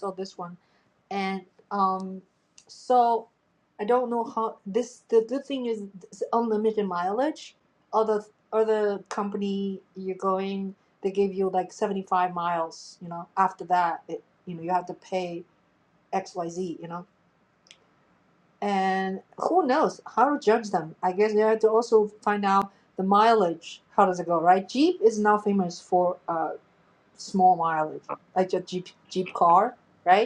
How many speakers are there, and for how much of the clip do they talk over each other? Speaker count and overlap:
one, no overlap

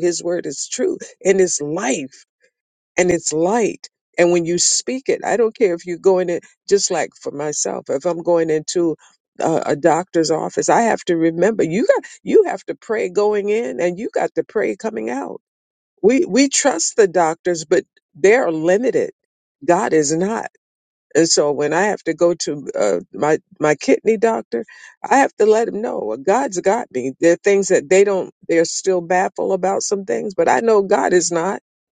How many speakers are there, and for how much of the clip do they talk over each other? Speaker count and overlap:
one, no overlap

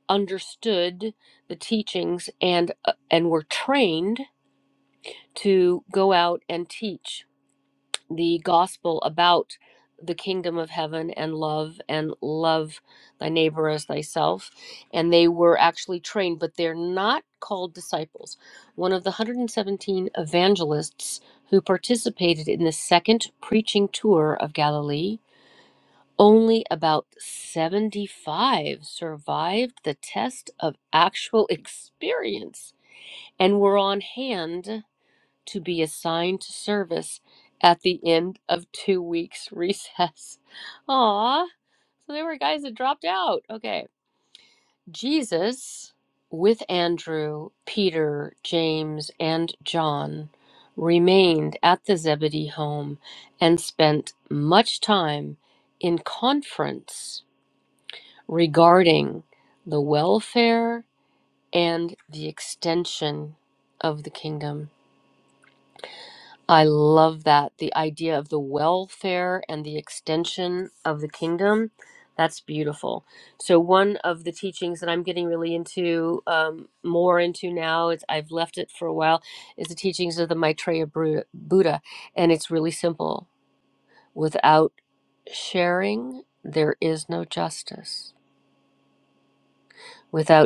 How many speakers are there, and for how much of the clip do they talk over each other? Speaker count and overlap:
one, no overlap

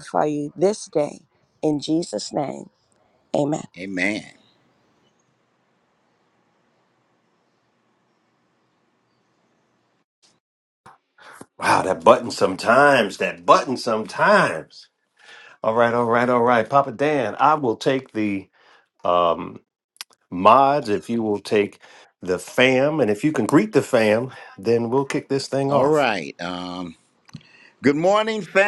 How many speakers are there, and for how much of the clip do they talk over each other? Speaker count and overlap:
three, about 1%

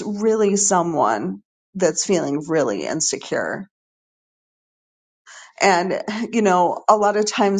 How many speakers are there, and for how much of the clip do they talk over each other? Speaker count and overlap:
one, no overlap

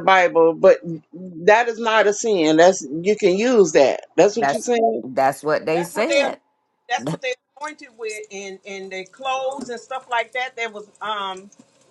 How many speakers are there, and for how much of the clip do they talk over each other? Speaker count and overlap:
three, about 6%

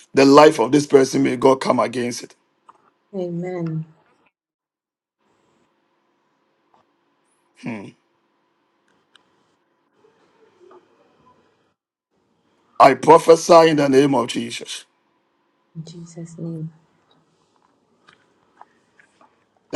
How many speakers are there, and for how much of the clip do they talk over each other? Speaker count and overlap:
two, no overlap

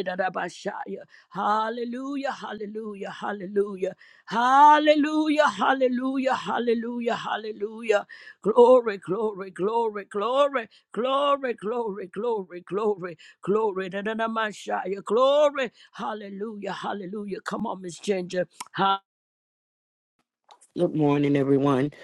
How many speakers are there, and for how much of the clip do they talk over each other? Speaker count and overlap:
two, no overlap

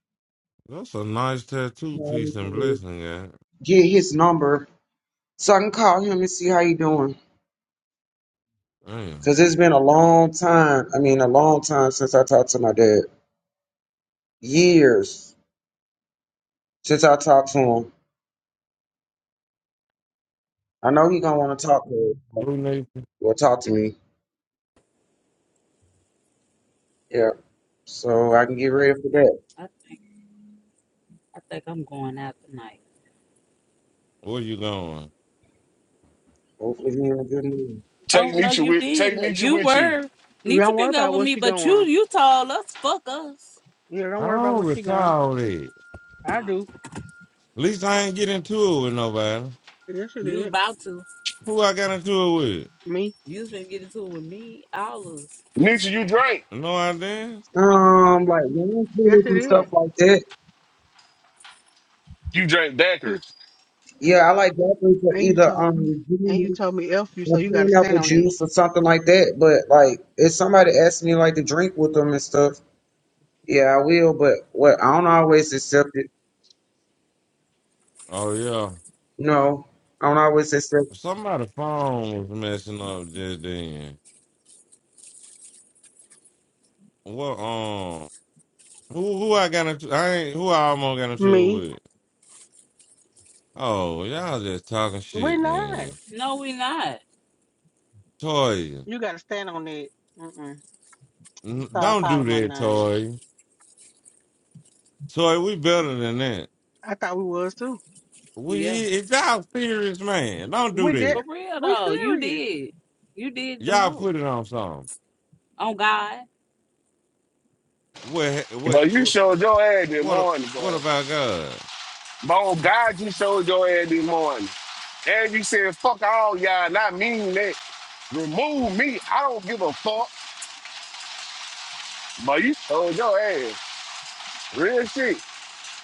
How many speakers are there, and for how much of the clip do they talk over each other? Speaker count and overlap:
five, about 9%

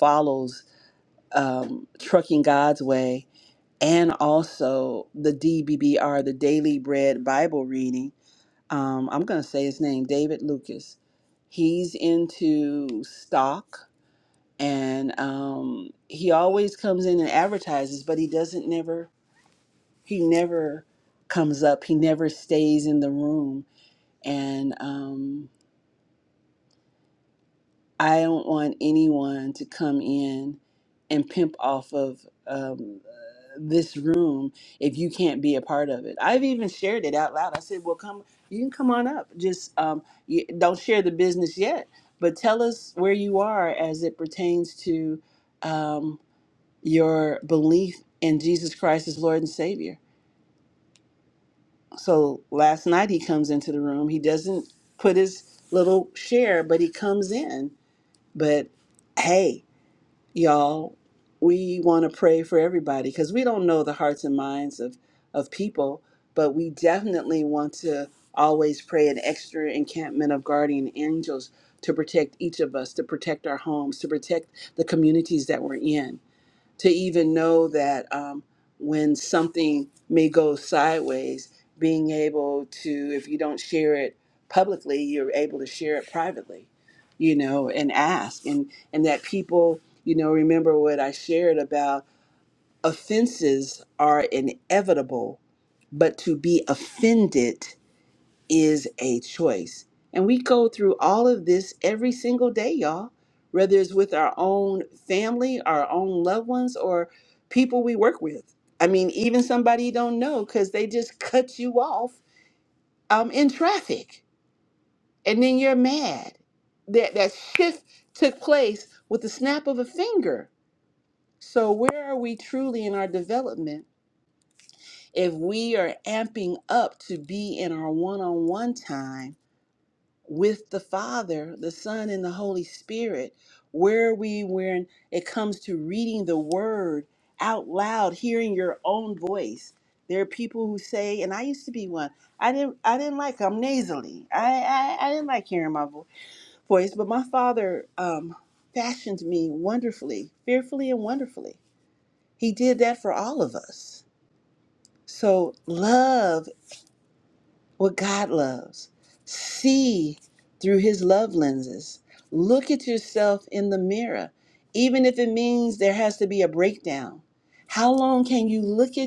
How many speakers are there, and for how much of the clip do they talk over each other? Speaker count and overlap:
one, no overlap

